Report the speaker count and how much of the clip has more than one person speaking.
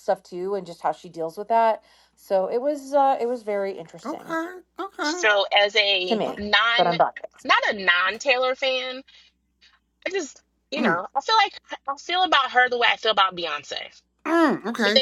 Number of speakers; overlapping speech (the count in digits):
3, about 8%